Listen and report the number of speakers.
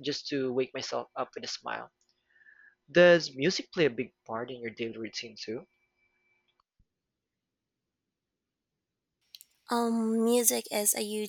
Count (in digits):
2